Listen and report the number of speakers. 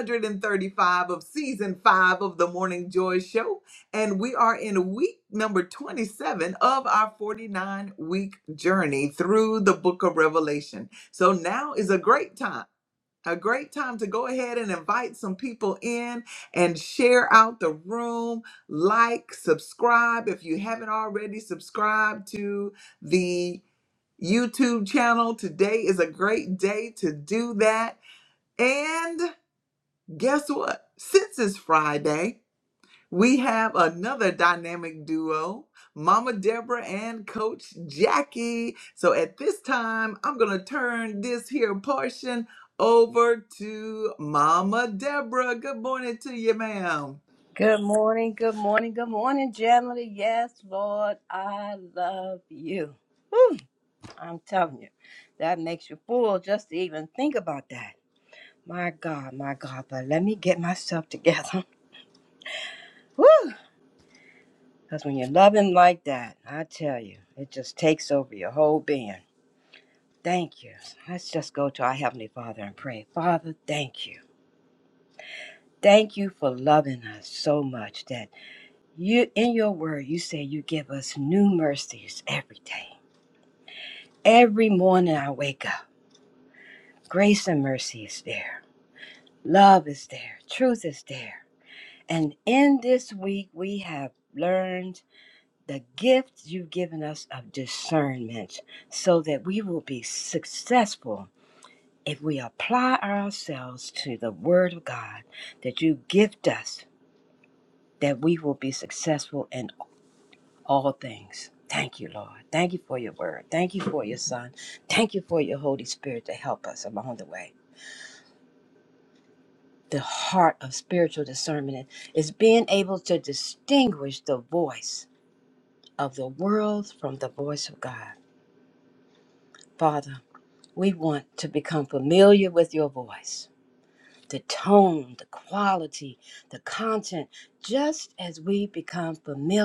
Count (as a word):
two